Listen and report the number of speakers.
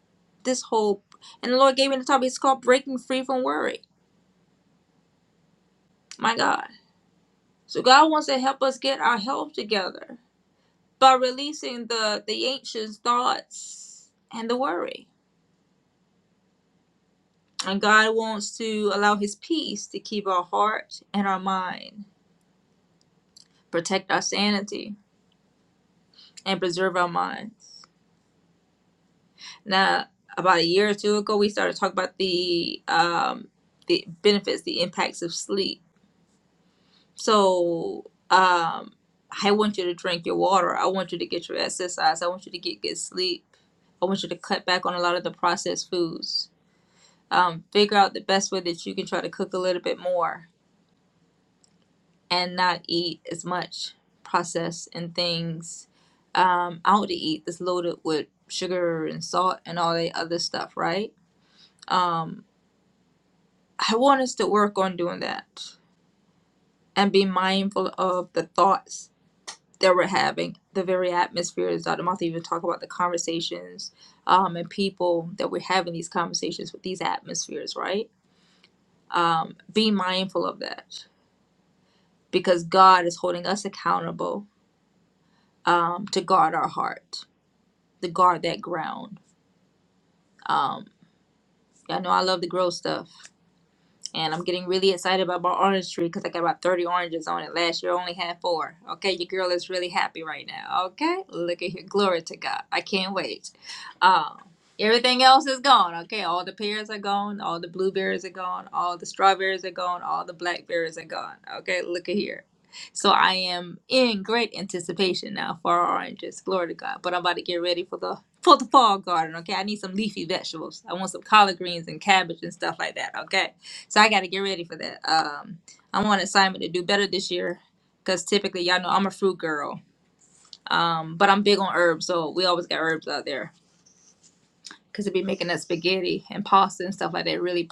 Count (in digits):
1